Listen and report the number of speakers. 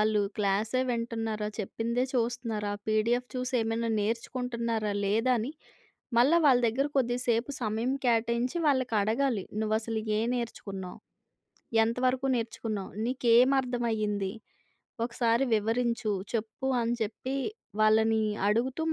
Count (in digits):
1